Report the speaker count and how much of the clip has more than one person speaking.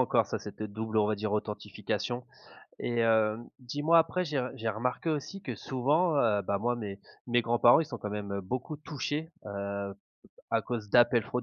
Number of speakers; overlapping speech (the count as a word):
one, no overlap